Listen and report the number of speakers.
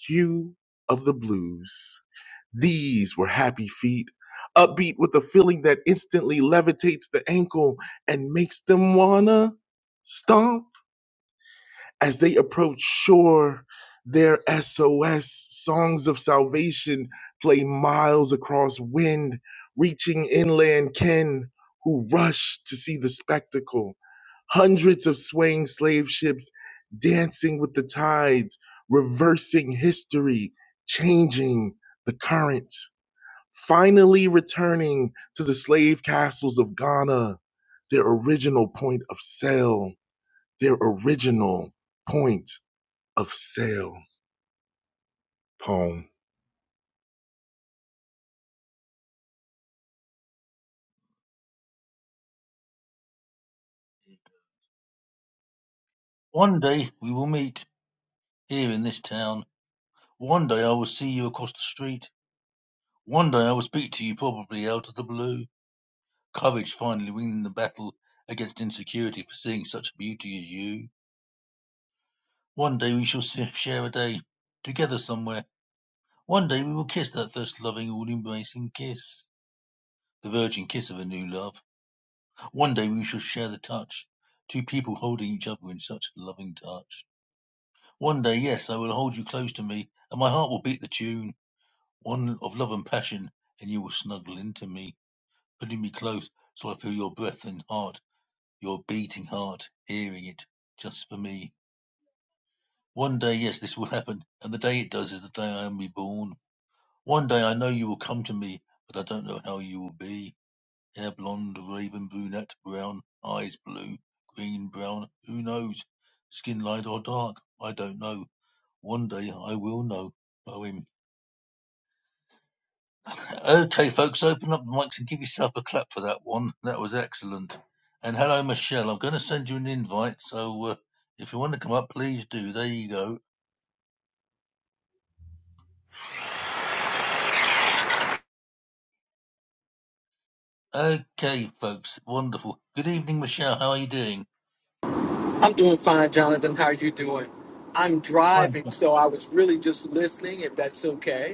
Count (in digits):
3